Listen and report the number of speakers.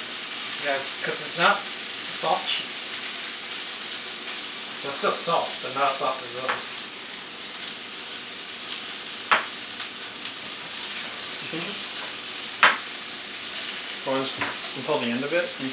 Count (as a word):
two